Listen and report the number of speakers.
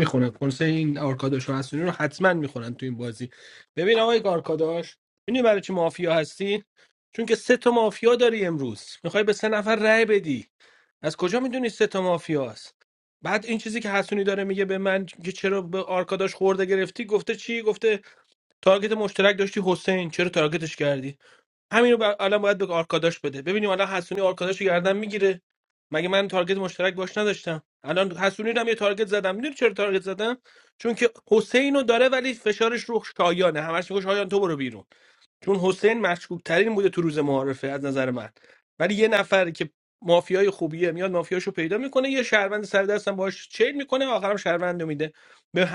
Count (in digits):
1